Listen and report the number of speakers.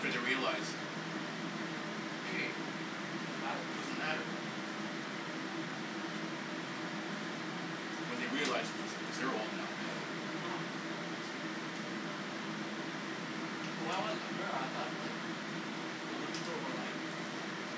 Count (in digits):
2